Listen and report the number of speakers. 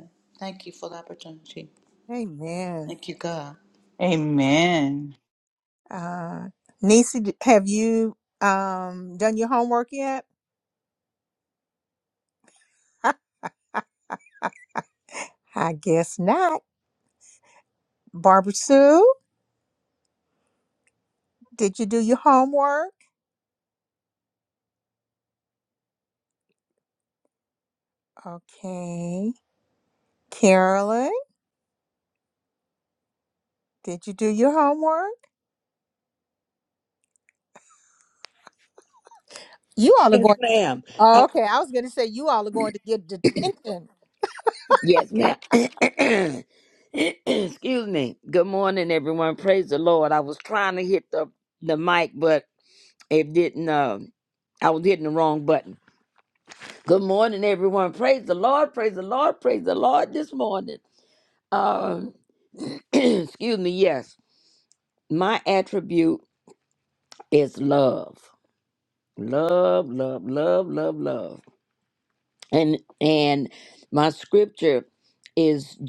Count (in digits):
4